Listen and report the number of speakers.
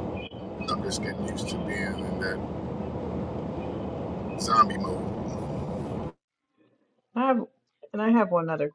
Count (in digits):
2